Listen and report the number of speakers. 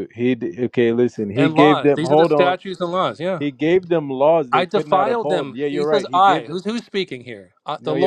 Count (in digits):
2